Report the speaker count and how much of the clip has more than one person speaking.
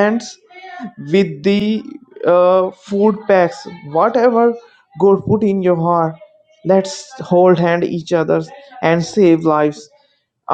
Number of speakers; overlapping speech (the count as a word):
one, no overlap